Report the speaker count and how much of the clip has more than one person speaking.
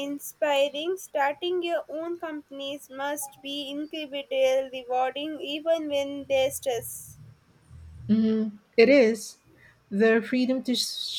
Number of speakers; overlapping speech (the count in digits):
2, no overlap